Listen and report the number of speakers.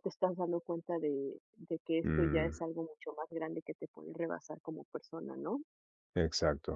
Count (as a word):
two